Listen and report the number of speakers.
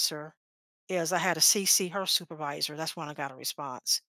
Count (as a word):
one